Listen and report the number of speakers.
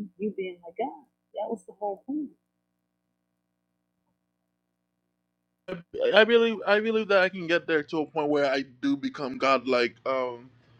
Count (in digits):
2